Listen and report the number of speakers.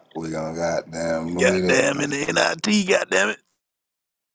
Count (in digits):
2